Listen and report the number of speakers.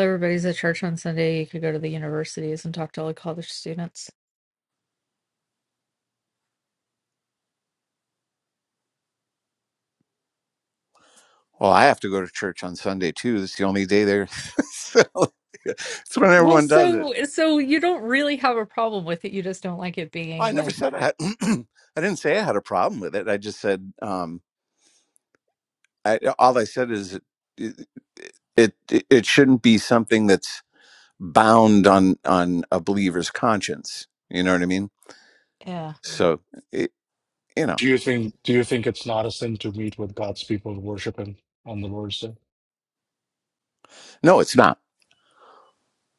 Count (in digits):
3